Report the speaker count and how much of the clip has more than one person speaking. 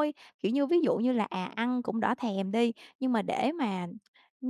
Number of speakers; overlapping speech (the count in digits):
1, no overlap